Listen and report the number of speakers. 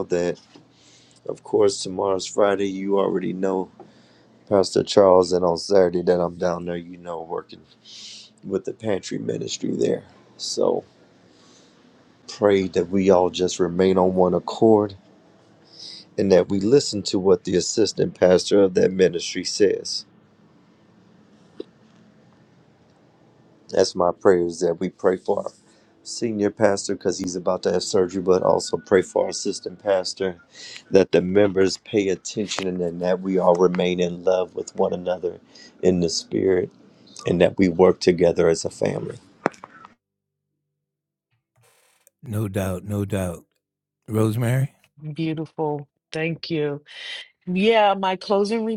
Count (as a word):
three